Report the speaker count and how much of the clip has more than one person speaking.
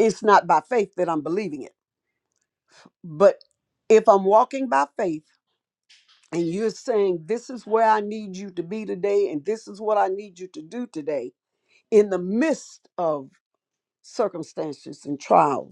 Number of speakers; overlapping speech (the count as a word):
one, no overlap